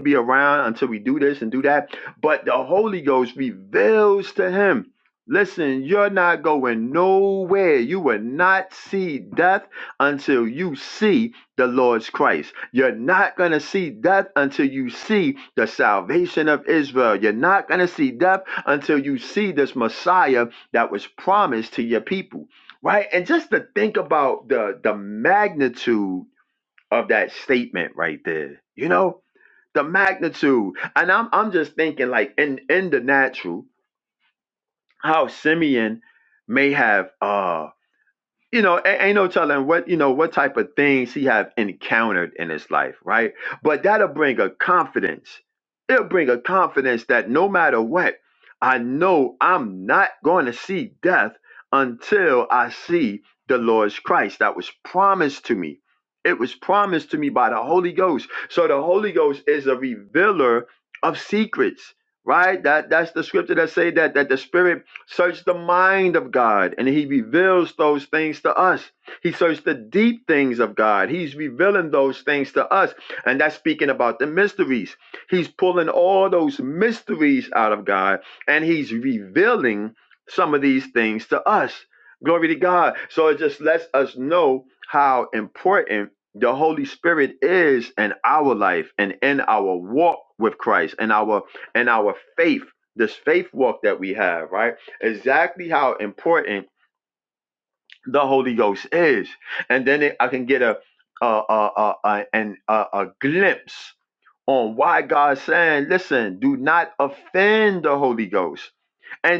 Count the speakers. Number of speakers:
one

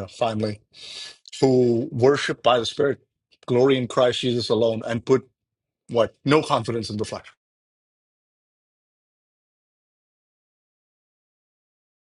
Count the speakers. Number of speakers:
one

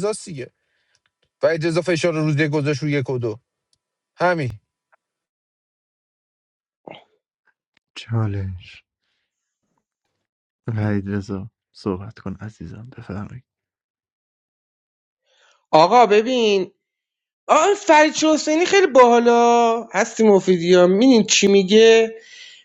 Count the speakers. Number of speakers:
three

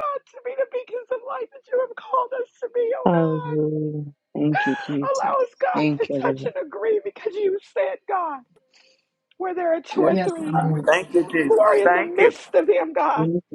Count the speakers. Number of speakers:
three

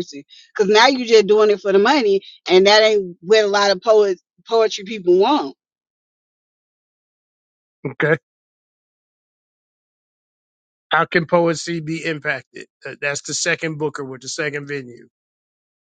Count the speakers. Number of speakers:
two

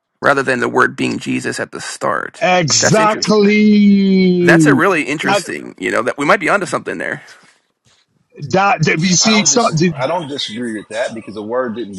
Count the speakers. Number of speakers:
three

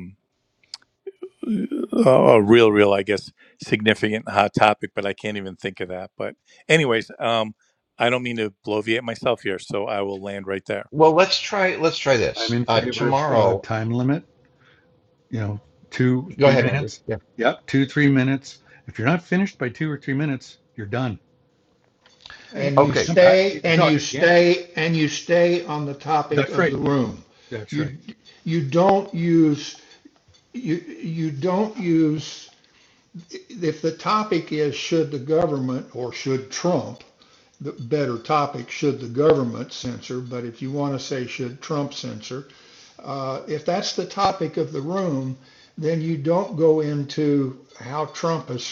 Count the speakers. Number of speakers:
four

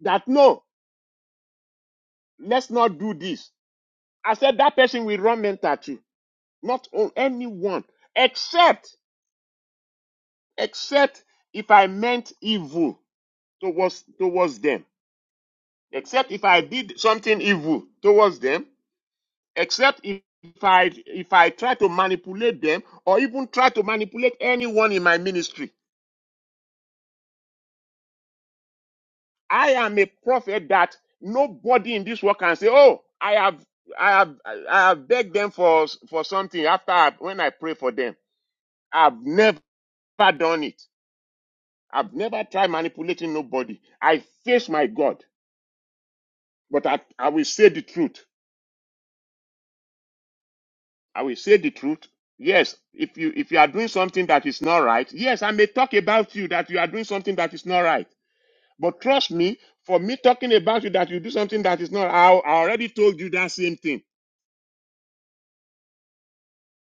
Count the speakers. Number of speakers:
one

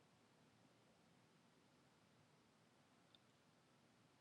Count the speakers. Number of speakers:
zero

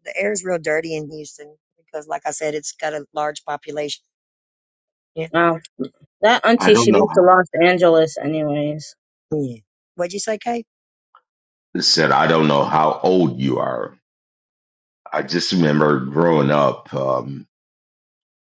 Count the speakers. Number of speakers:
three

